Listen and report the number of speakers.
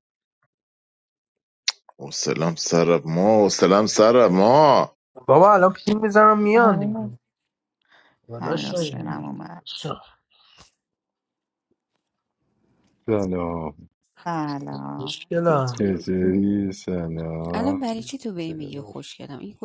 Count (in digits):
5